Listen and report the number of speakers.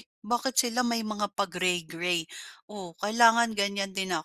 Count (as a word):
one